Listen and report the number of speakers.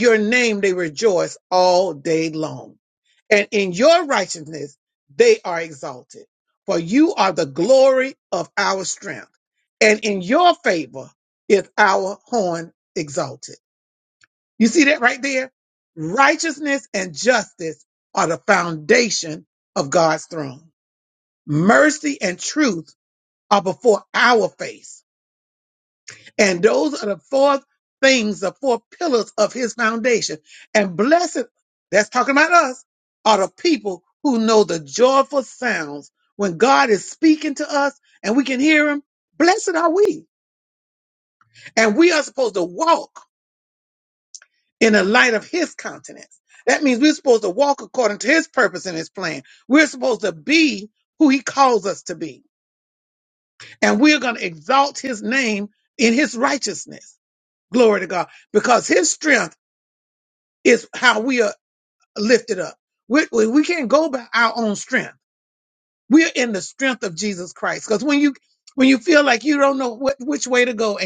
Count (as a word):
one